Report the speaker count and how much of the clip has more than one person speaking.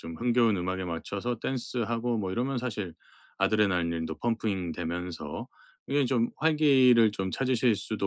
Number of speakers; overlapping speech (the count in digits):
1, no overlap